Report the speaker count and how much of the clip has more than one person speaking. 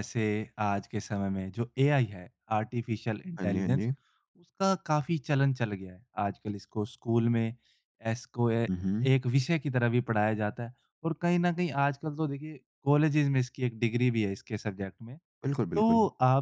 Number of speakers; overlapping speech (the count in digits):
2, about 5%